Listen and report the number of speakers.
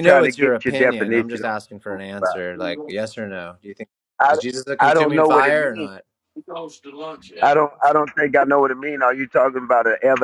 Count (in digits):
3